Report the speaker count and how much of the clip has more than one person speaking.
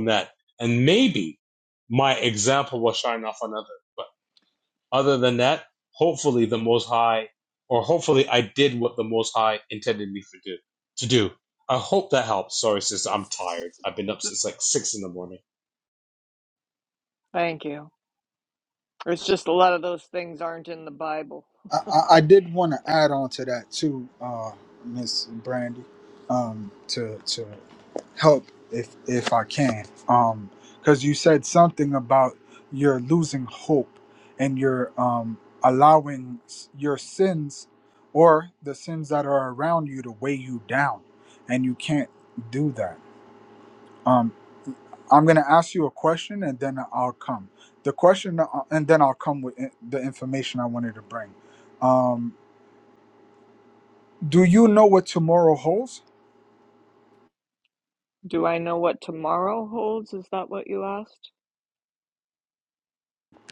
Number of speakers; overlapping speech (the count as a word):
three, no overlap